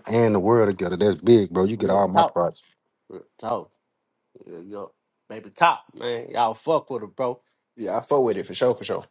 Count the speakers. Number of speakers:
three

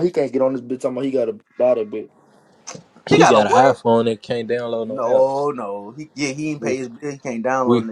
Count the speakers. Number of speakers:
three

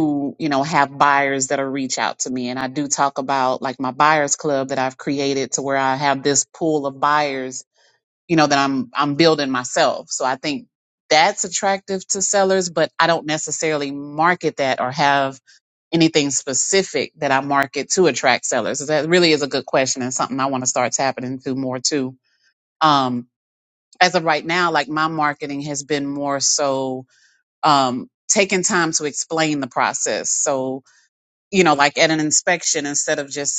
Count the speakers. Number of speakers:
one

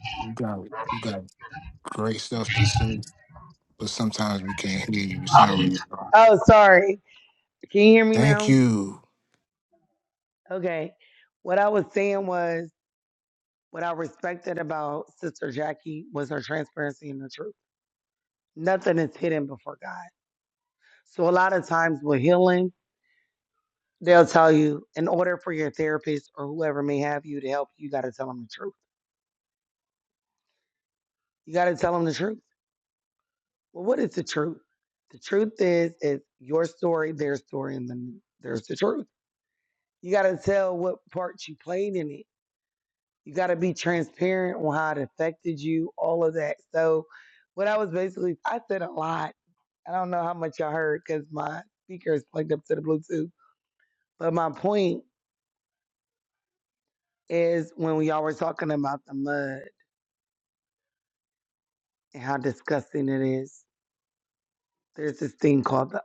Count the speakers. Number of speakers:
two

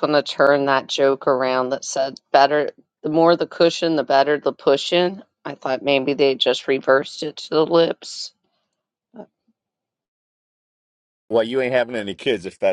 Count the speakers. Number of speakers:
two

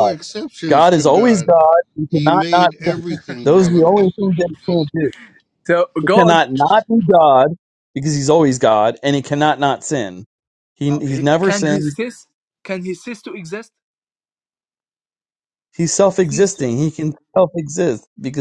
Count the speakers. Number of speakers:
three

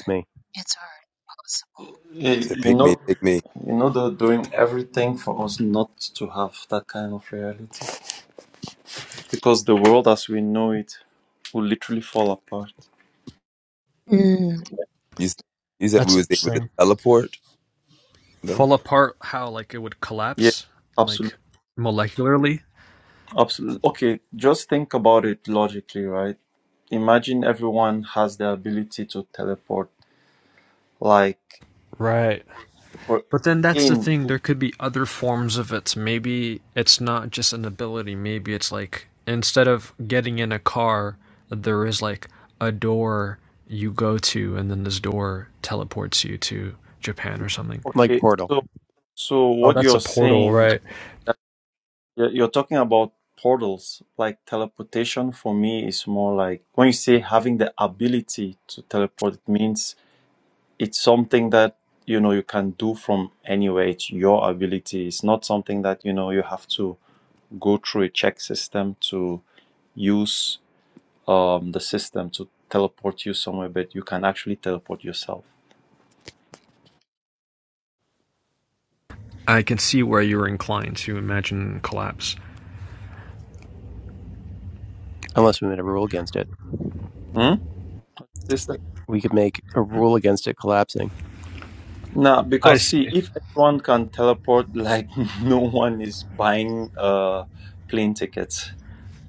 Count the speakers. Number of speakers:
five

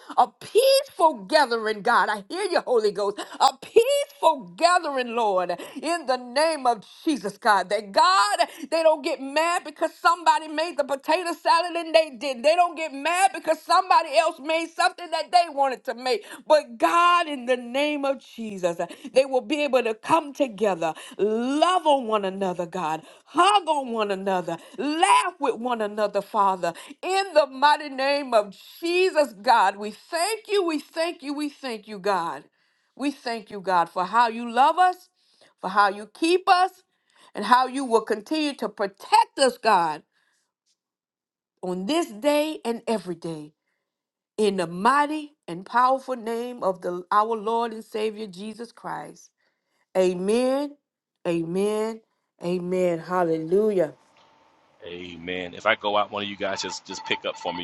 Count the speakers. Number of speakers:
two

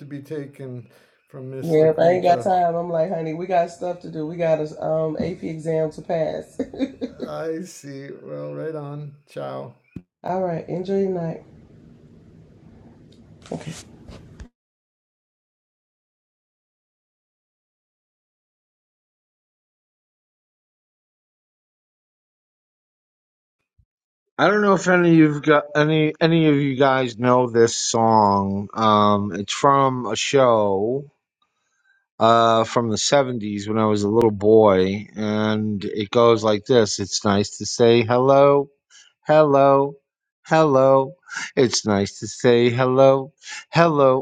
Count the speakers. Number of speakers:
three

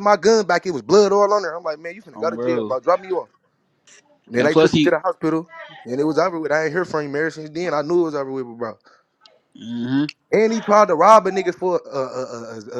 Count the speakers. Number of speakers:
two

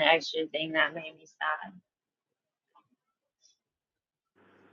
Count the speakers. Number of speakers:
one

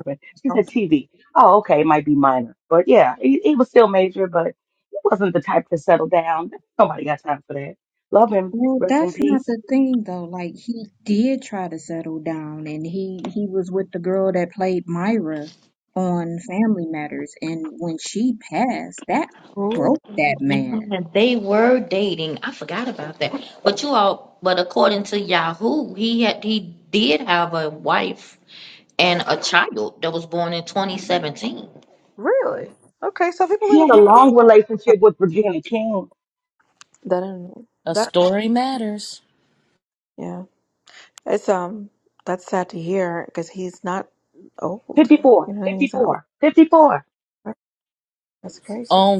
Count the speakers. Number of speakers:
five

